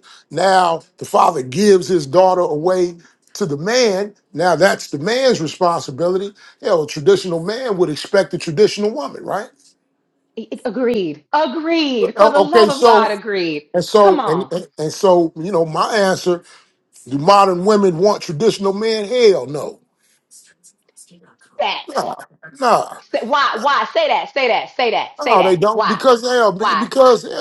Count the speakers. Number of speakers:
2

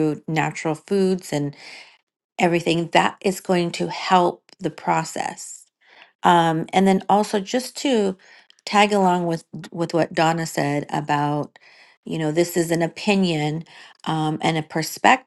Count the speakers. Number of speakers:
1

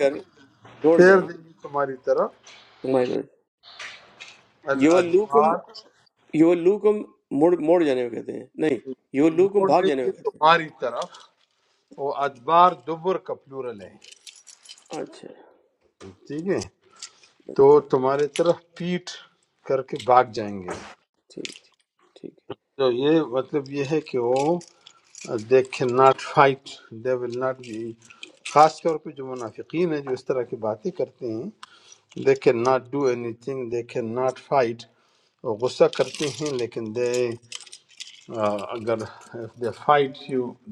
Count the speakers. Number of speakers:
2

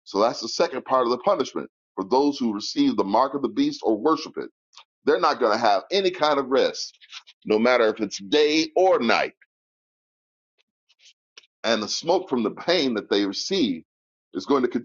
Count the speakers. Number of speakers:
1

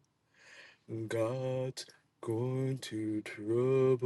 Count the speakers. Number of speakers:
1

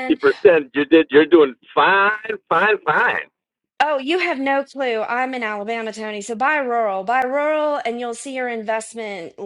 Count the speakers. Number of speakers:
2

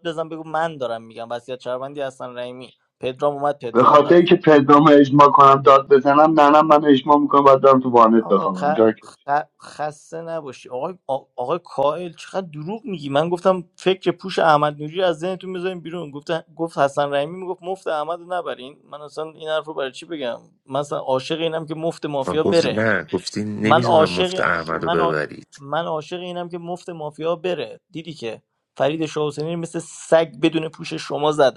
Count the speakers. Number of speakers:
3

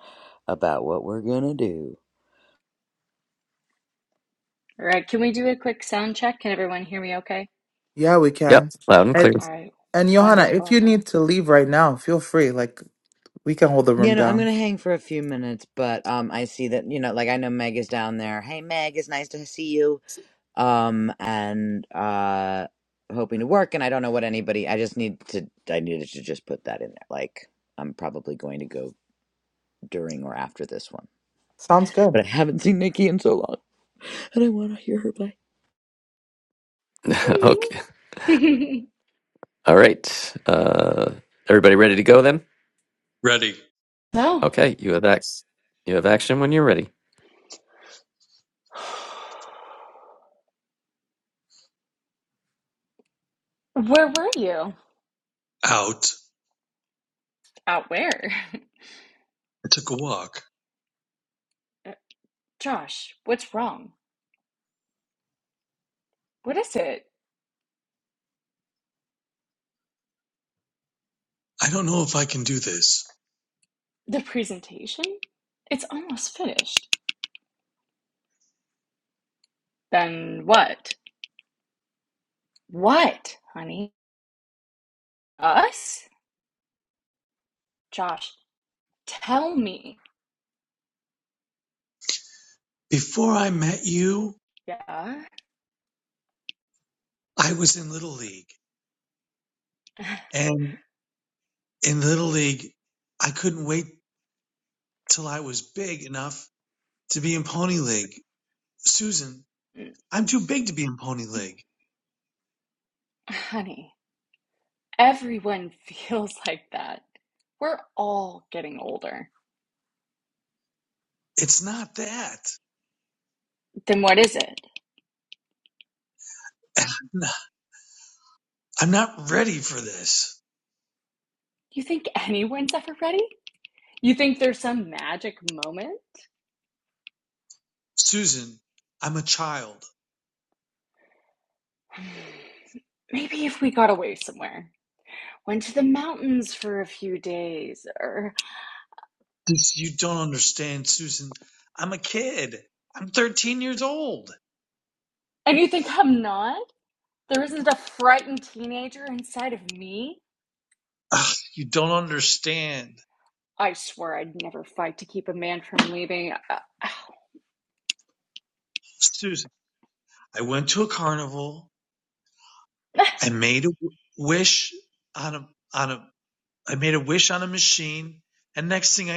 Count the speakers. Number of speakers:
5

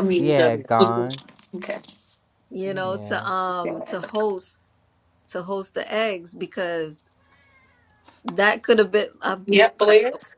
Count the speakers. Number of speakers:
3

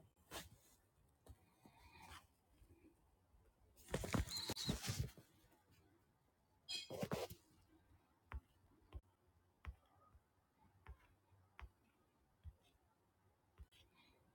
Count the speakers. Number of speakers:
0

